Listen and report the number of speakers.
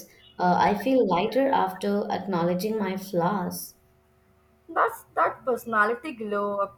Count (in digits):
2